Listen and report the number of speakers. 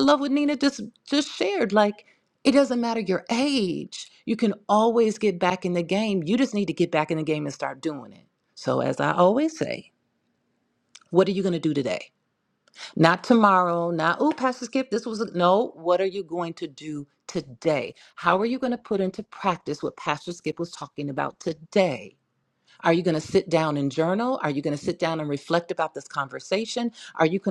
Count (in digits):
1